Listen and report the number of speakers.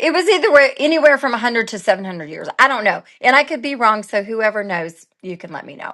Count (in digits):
1